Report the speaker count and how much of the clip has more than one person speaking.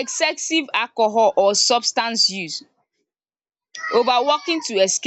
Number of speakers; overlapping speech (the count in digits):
1, no overlap